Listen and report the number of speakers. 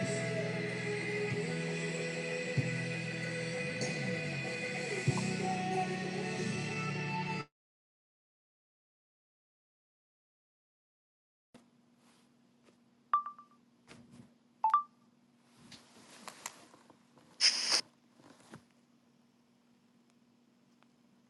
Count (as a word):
zero